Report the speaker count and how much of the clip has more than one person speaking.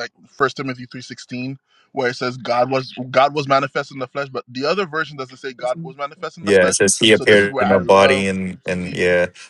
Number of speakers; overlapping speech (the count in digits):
2, about 19%